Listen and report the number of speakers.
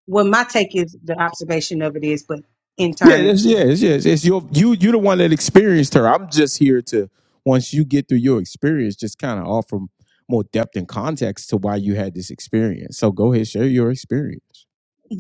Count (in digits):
2